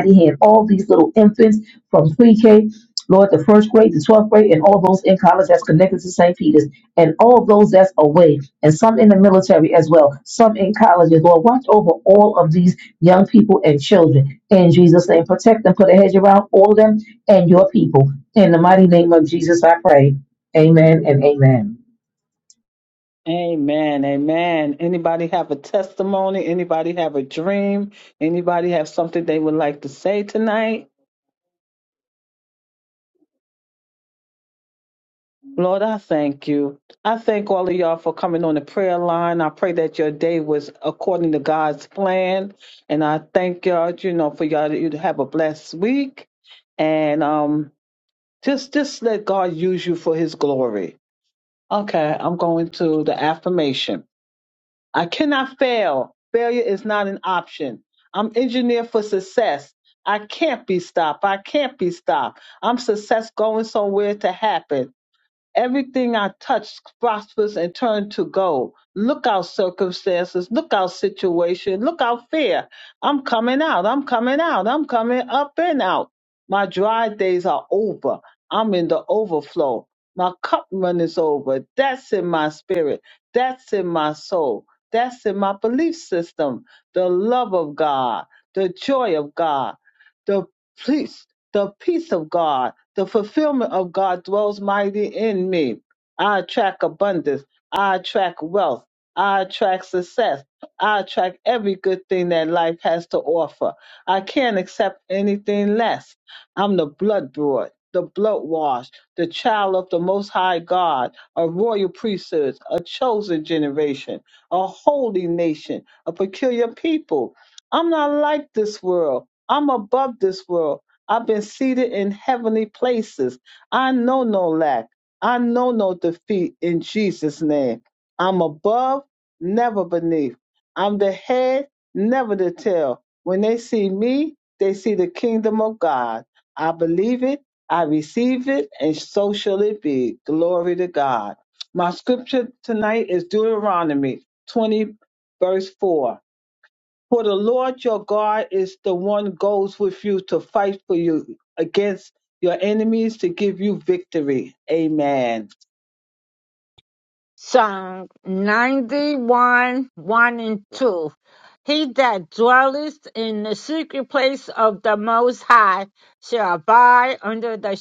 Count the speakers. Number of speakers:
3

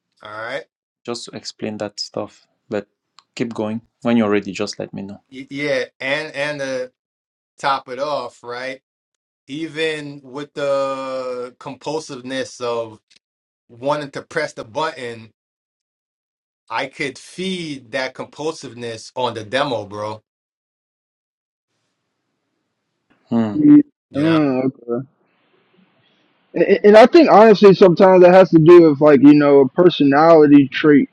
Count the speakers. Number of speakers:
3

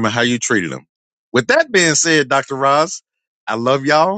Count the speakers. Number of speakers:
1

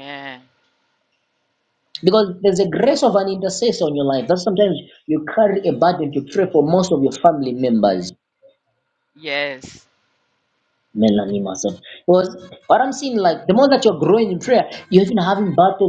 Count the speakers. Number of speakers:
2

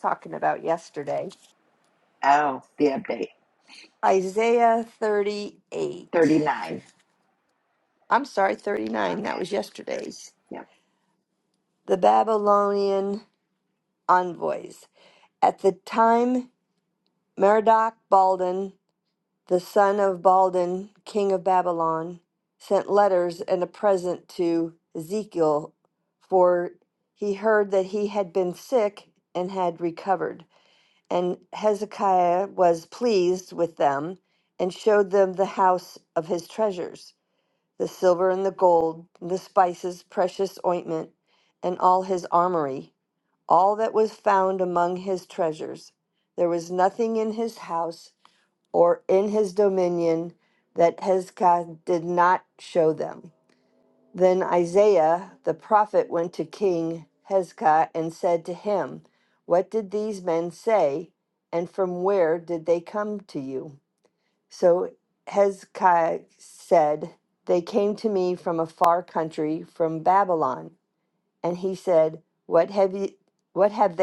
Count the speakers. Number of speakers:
2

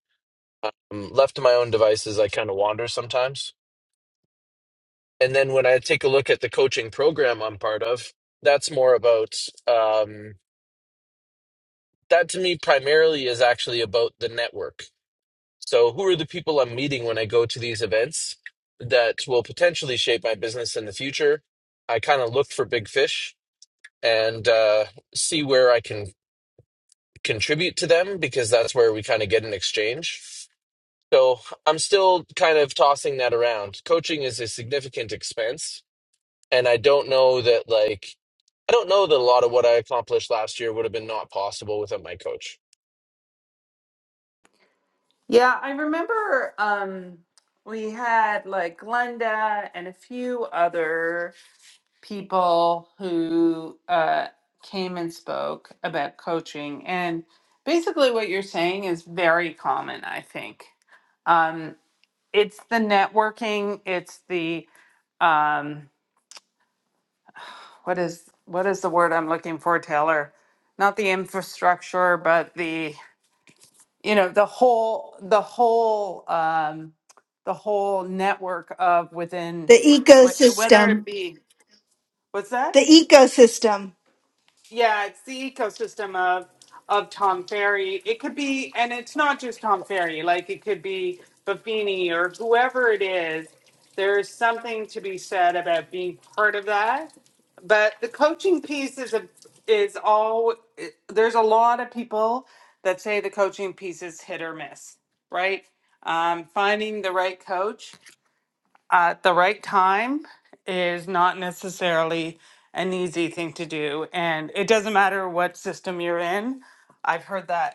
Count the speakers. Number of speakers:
3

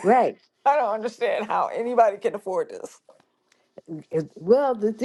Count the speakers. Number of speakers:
2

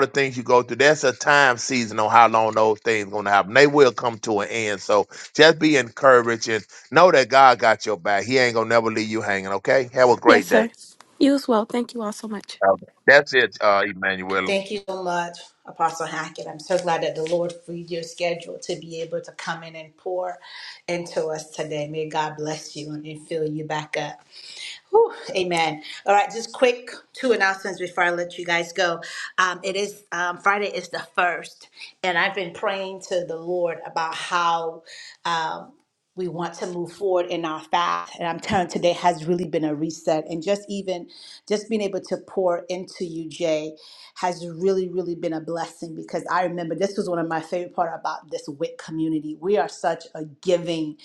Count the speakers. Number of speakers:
3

